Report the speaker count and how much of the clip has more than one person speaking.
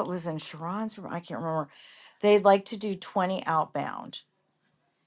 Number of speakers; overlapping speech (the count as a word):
one, no overlap